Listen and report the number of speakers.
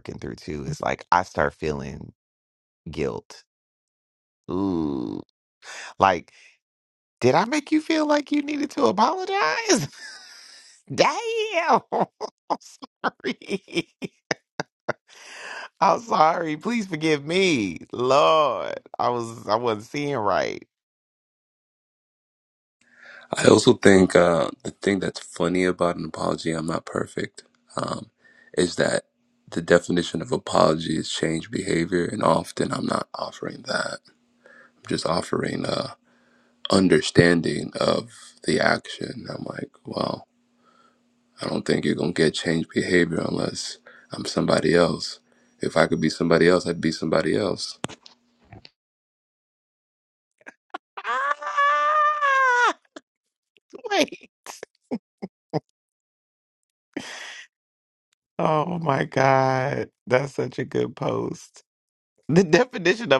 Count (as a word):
two